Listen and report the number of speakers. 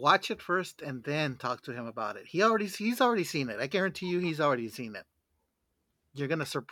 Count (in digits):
1